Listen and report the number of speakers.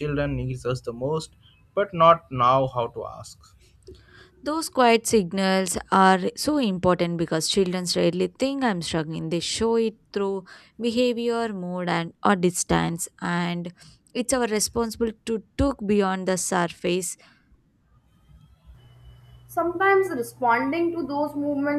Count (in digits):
3